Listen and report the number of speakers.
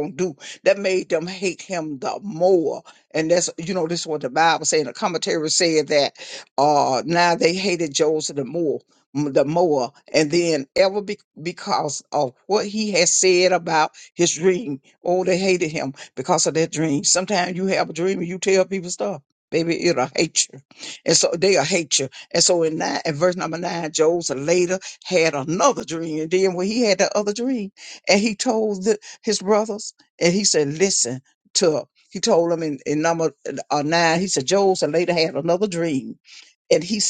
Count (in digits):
1